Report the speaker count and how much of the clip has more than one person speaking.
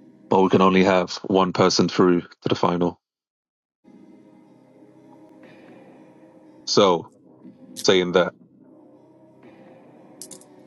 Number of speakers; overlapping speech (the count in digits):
1, no overlap